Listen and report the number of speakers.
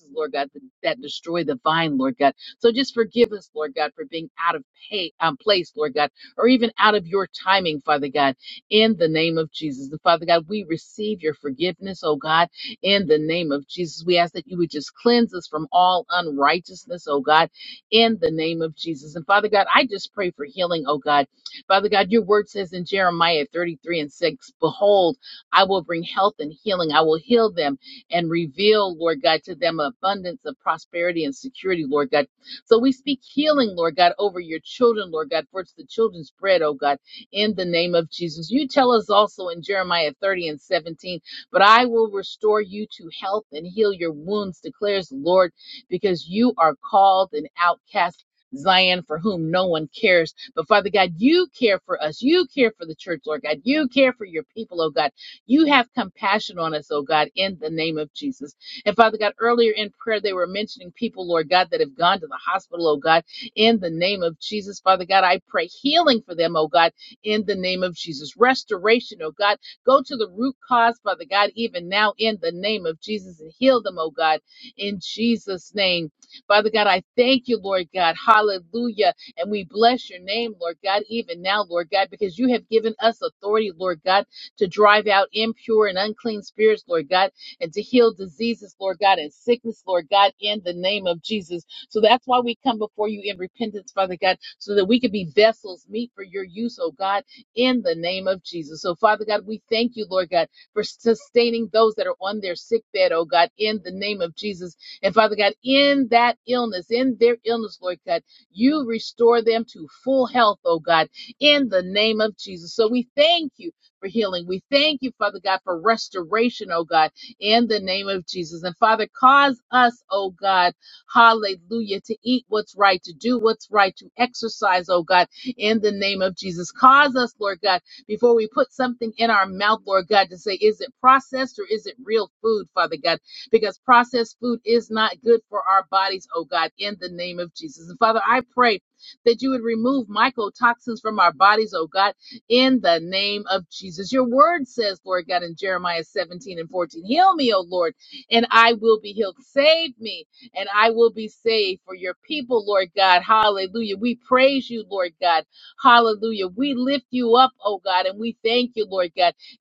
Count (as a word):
one